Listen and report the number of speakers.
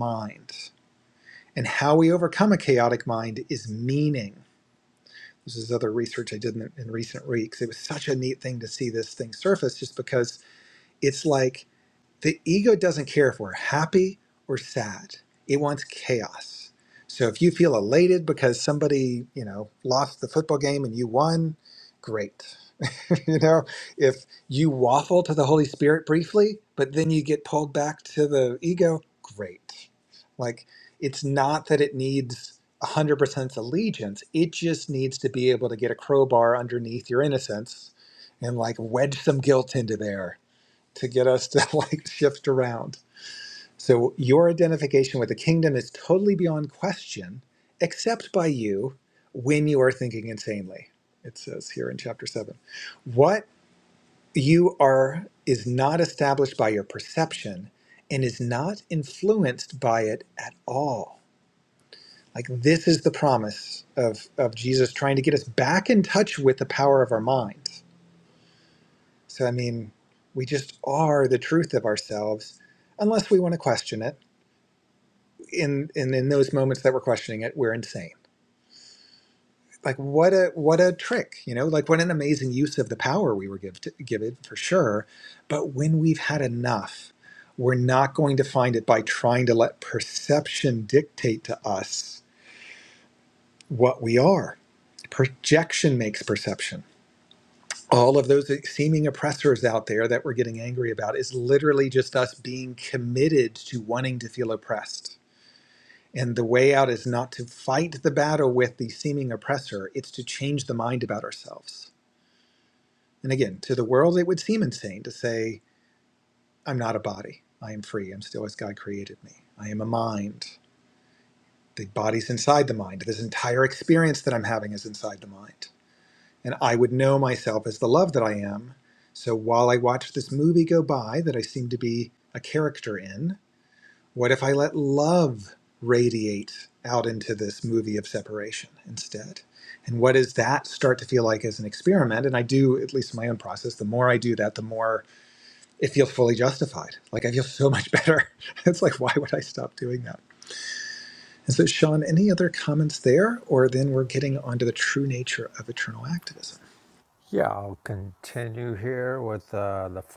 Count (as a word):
two